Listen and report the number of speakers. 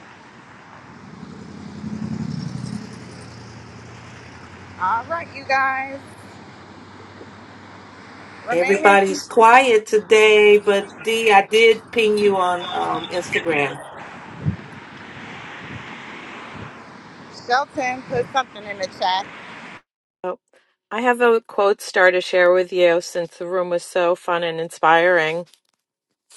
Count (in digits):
3